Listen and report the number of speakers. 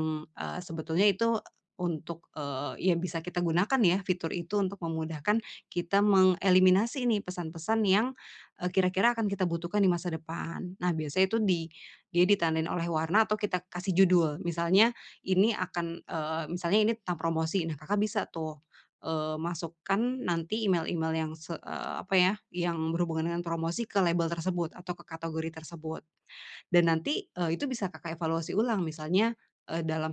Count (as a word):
one